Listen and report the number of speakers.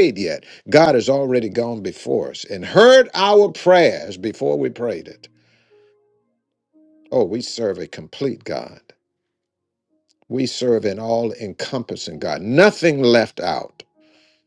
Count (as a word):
one